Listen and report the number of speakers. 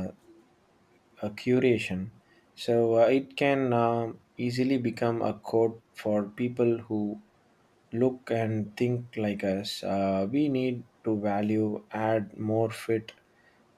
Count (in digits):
1